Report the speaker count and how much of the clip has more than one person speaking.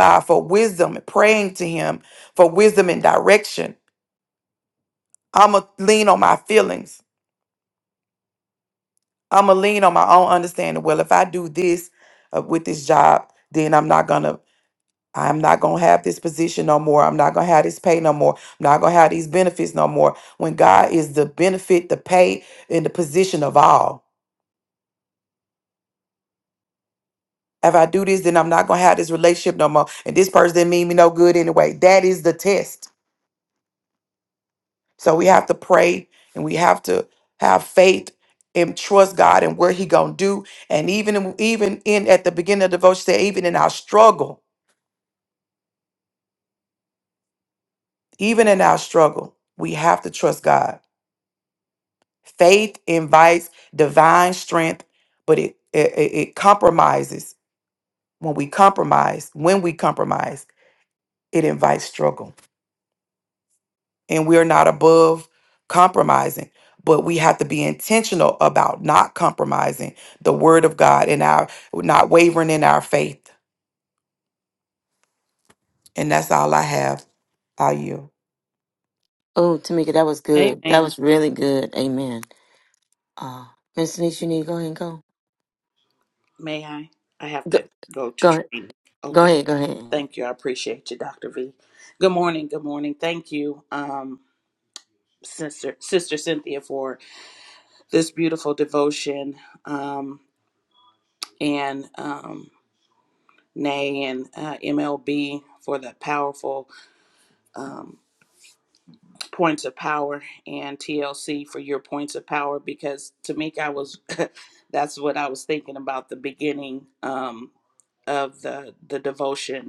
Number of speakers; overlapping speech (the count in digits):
3, about 1%